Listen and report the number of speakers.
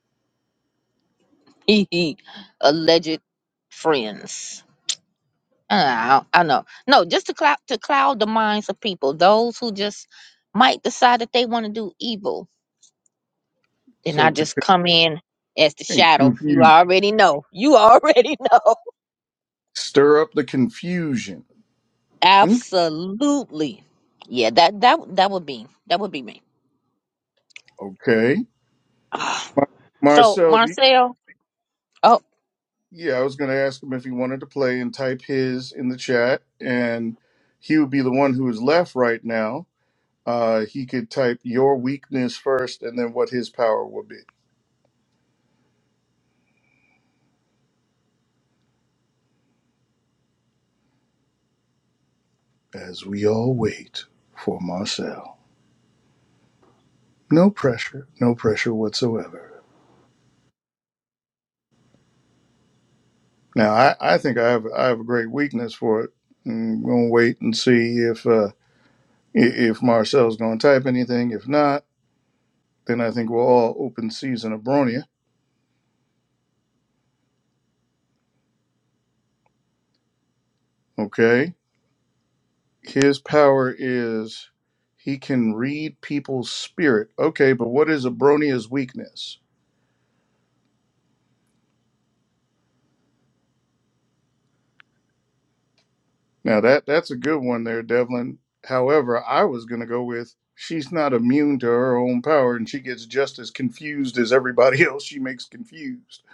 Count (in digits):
2